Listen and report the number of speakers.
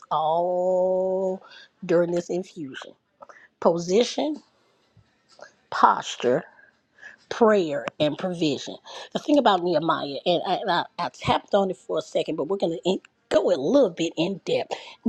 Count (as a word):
one